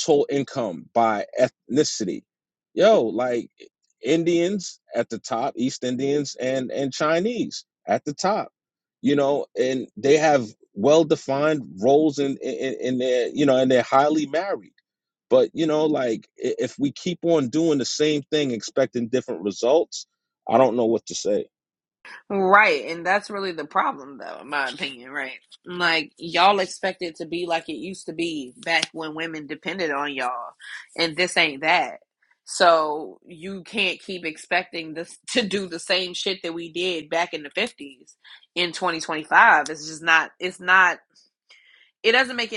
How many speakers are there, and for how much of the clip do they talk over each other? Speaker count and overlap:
2, no overlap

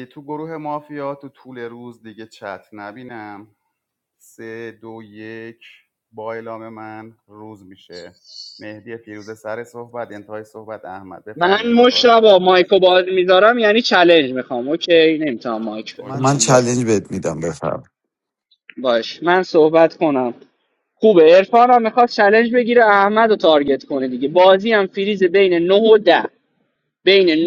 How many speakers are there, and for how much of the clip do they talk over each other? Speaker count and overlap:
3, about 5%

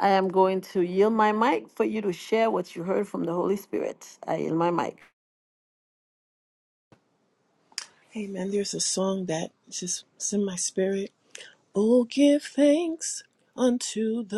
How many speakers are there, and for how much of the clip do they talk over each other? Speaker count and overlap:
2, no overlap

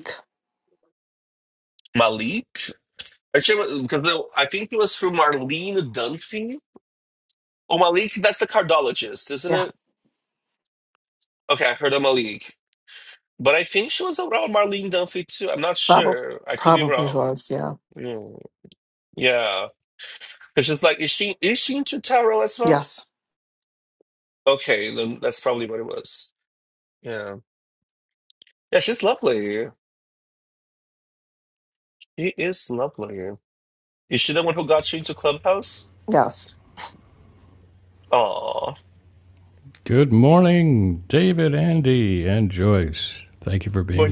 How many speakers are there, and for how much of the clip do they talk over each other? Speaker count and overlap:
3, about 3%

